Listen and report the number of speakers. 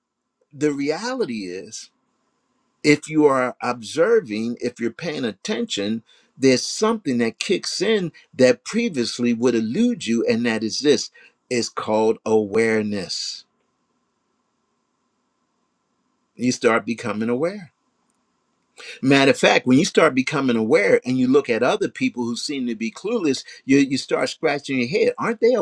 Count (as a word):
one